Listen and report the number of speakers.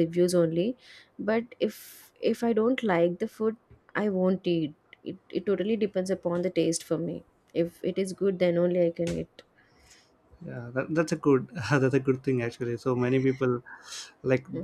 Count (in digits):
2